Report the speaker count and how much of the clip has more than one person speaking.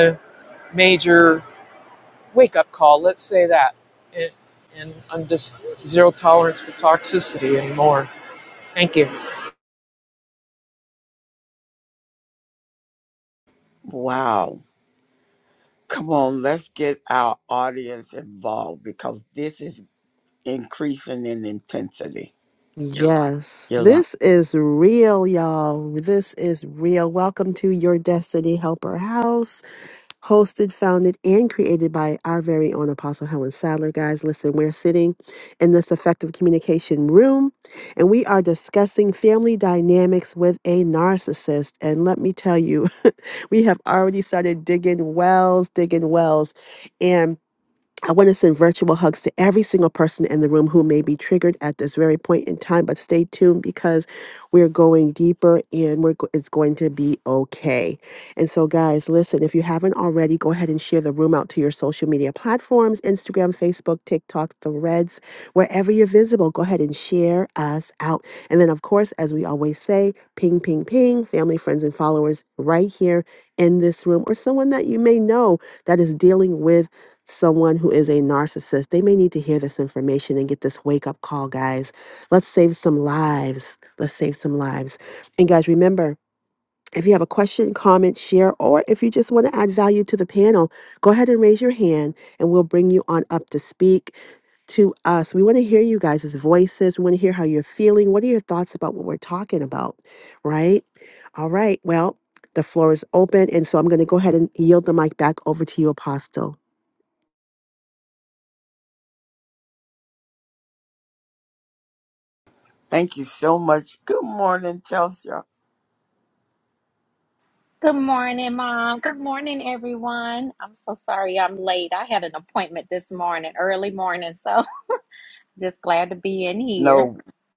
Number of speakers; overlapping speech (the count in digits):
4, under 1%